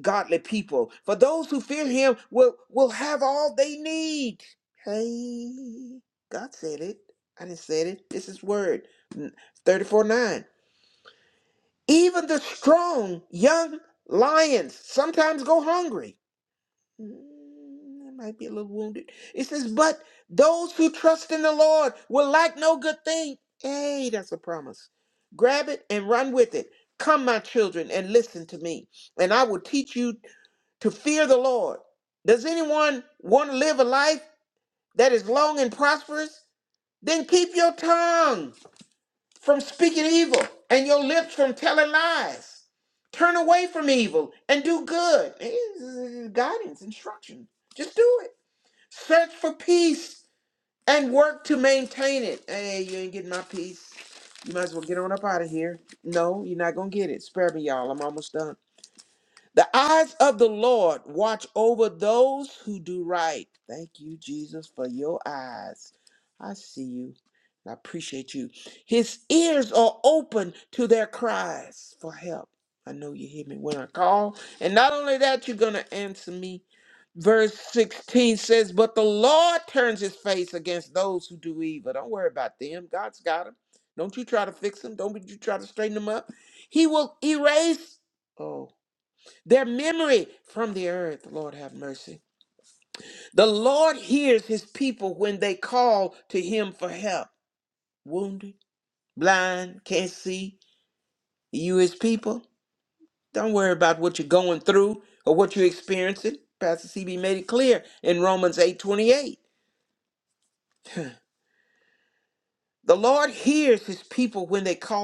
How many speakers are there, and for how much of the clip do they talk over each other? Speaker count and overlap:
1, no overlap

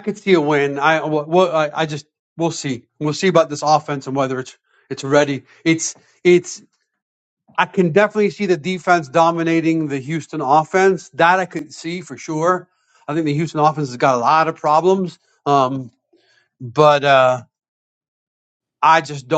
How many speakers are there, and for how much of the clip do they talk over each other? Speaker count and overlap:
1, no overlap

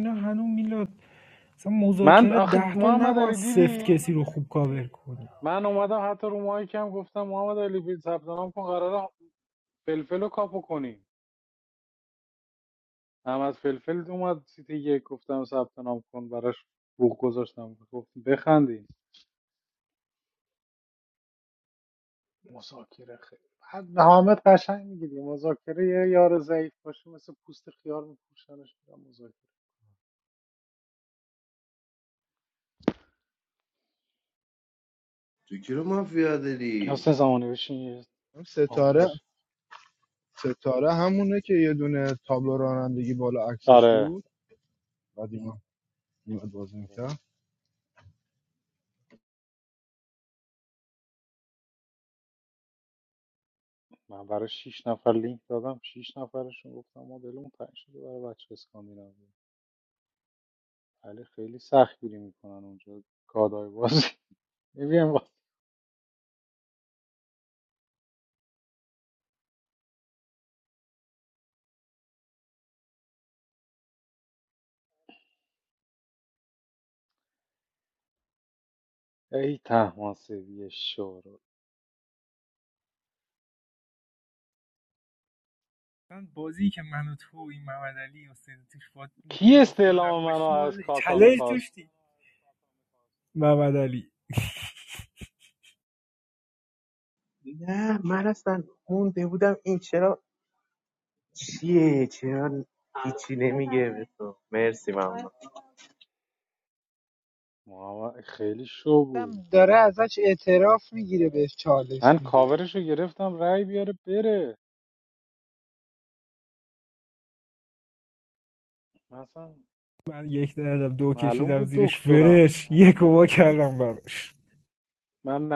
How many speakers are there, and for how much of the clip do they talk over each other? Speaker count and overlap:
6, about 5%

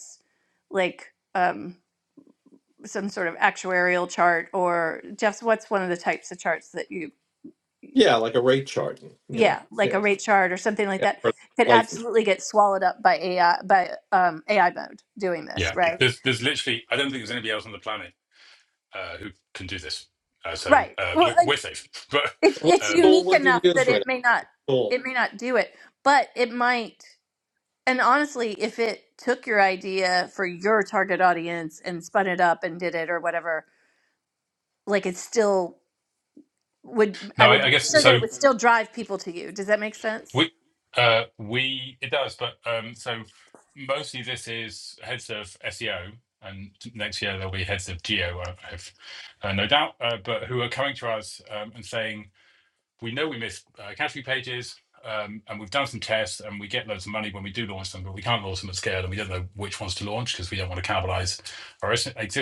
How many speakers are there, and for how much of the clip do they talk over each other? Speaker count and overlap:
3, about 8%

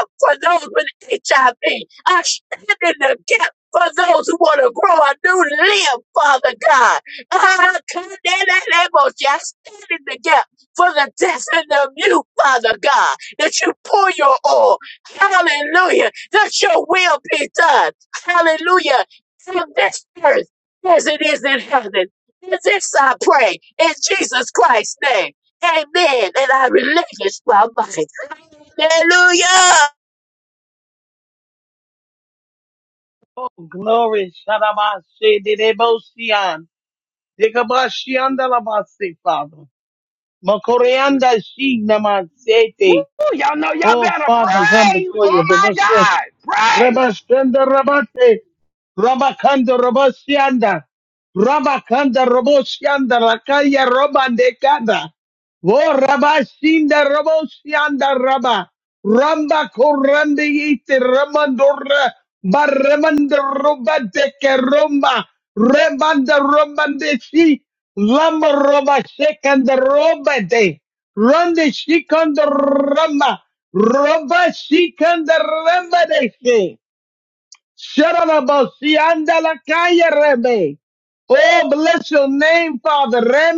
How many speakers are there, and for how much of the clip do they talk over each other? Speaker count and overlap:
2, no overlap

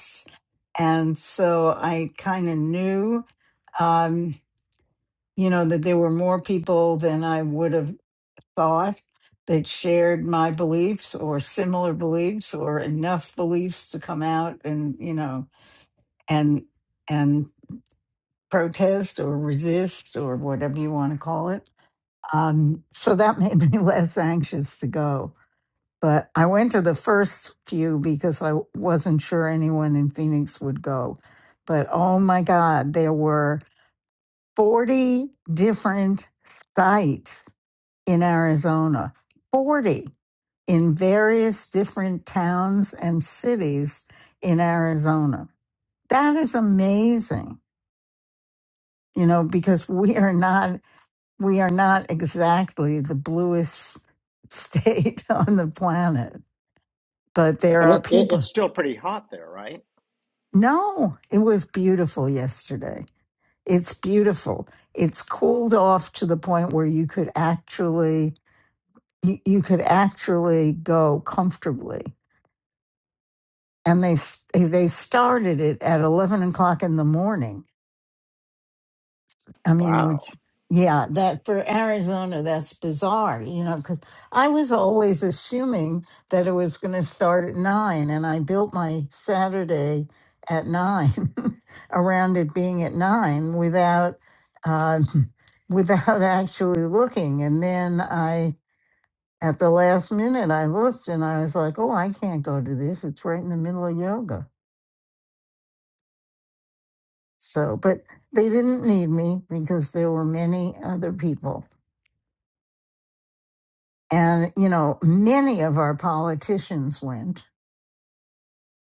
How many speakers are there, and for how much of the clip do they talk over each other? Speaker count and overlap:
2, about 1%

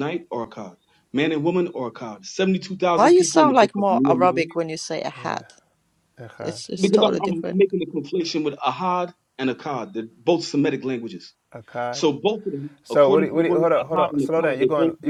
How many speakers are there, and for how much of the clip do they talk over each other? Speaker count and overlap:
3, about 32%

